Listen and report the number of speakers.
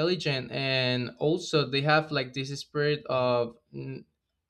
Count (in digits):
1